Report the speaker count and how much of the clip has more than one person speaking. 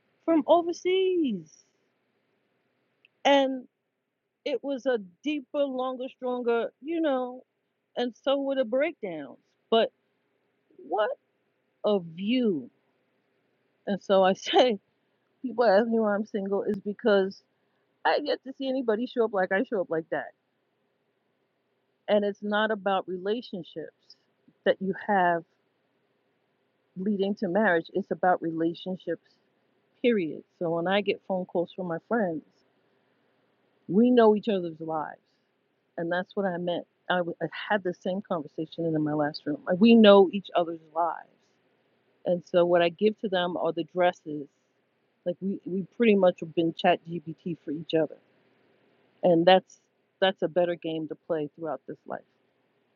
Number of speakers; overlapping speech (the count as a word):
one, no overlap